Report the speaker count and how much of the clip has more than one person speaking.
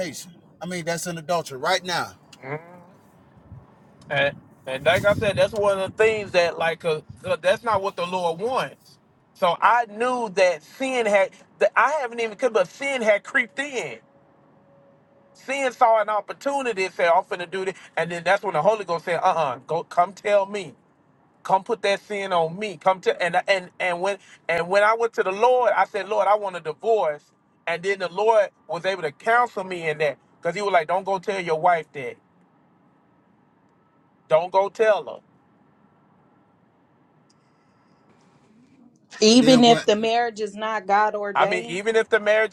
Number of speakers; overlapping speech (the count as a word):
three, about 2%